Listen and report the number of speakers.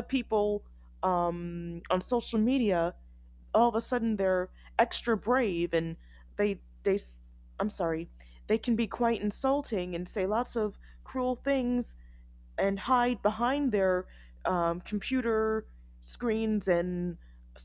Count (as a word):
one